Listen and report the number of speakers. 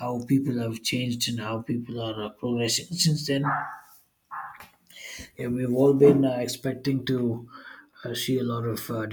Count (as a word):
one